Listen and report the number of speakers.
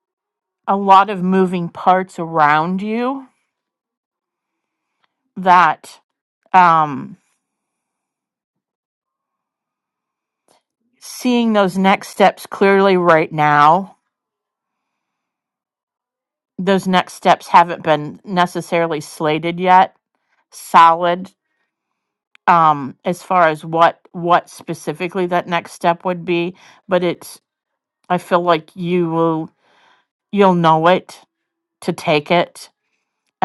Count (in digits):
1